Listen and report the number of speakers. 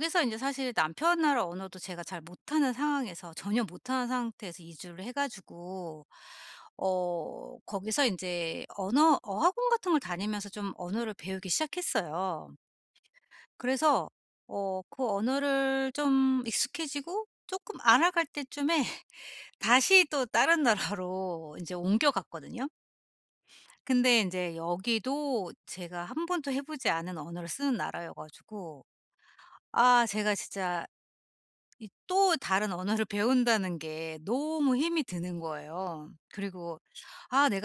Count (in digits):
1